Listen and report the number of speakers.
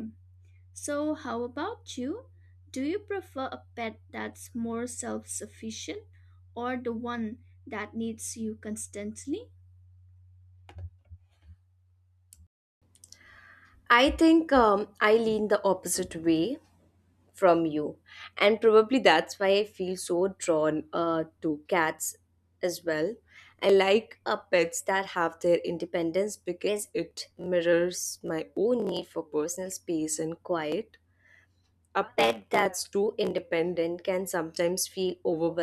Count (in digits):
2